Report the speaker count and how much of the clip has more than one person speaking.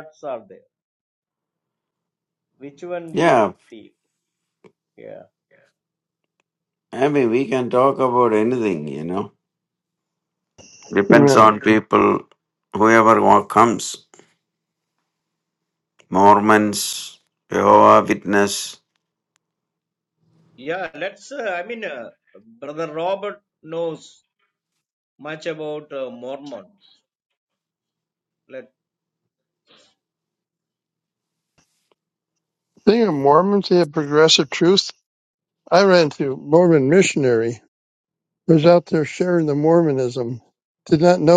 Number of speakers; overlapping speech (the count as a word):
three, about 2%